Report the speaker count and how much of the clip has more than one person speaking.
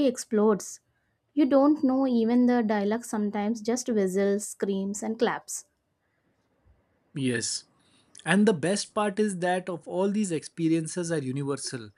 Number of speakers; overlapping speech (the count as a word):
two, no overlap